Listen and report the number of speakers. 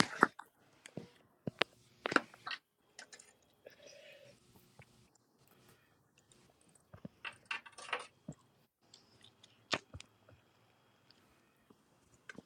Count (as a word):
zero